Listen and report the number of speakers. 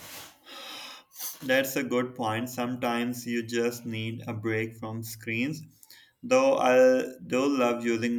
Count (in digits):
1